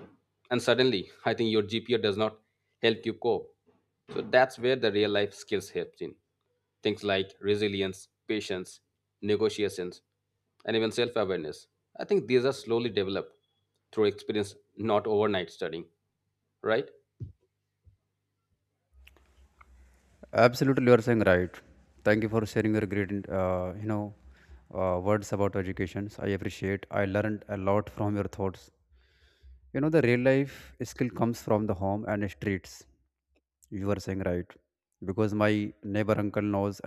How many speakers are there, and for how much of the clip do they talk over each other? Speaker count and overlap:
two, no overlap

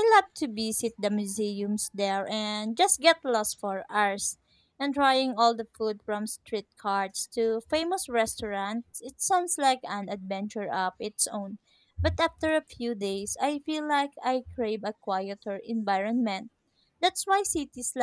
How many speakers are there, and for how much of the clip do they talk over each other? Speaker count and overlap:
one, no overlap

